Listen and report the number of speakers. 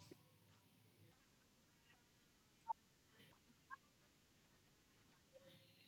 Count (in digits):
0